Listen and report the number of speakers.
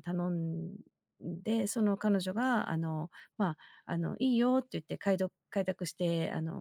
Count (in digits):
1